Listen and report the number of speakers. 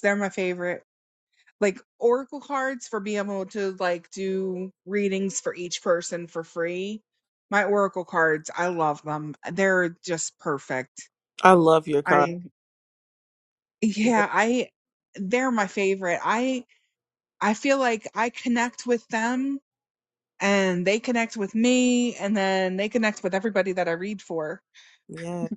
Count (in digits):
2